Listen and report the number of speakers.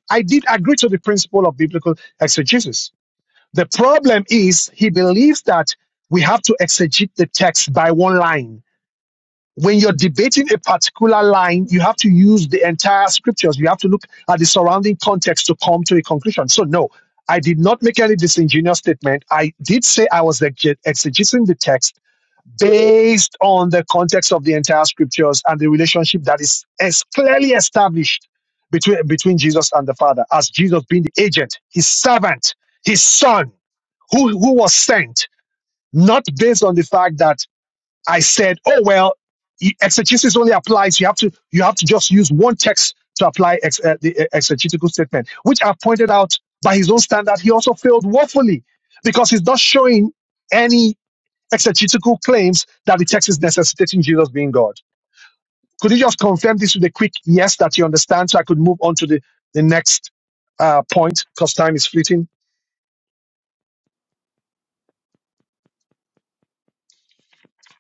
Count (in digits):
1